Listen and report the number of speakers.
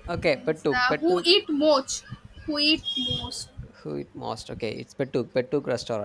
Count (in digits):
2